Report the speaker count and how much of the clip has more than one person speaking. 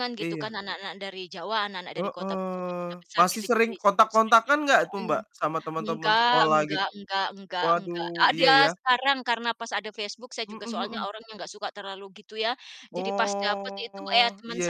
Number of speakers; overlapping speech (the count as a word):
two, about 44%